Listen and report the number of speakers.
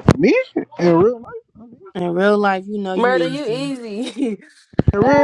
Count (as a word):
three